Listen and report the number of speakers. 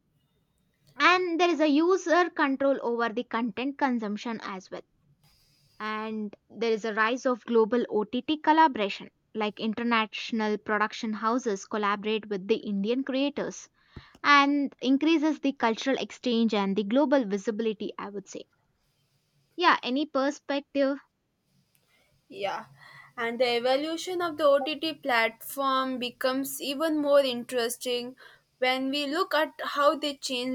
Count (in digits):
2